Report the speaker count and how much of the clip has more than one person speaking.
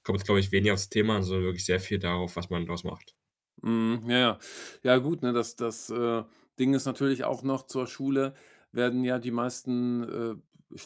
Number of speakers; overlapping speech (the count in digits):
2, no overlap